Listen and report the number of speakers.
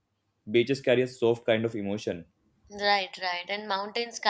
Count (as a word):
two